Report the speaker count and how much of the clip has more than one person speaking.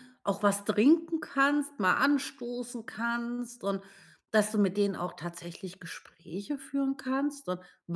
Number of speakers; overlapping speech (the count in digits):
1, no overlap